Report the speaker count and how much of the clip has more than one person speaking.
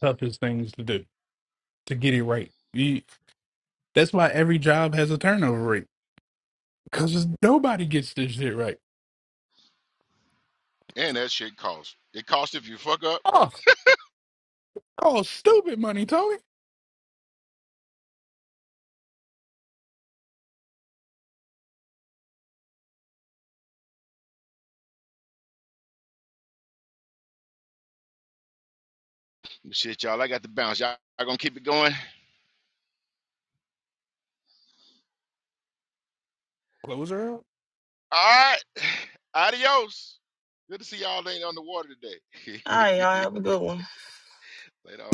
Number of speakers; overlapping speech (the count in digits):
3, under 1%